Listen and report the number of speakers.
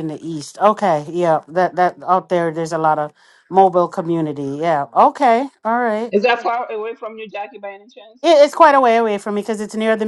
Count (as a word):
two